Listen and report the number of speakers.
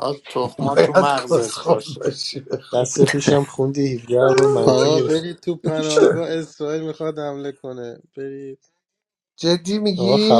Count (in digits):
4